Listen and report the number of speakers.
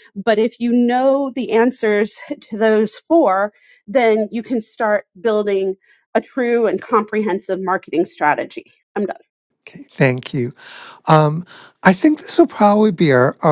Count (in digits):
2